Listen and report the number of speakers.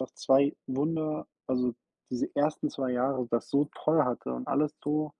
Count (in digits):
1